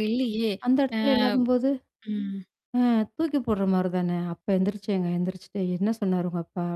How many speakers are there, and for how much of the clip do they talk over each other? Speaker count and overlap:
two, about 2%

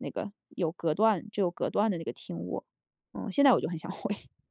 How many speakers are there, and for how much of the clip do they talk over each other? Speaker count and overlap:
one, no overlap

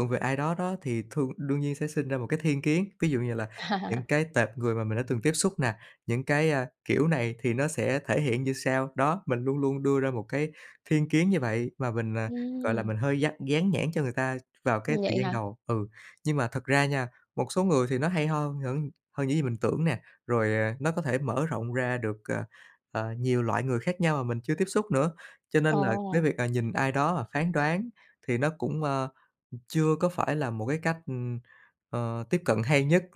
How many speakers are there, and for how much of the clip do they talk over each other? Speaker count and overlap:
two, about 4%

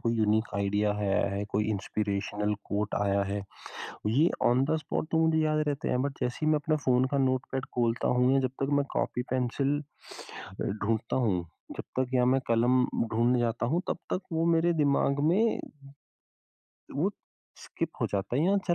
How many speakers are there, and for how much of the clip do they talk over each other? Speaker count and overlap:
one, no overlap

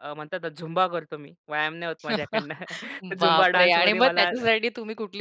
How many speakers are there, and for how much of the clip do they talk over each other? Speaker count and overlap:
two, about 22%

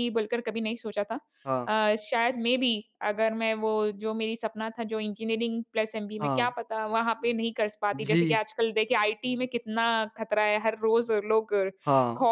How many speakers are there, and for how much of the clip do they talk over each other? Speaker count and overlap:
two, about 6%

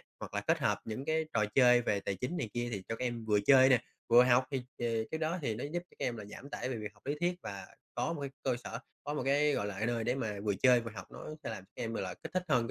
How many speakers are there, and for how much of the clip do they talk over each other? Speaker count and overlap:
one, no overlap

